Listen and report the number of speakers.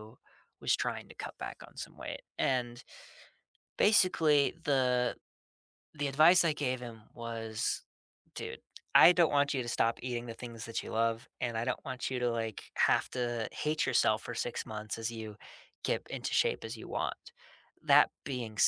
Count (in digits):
1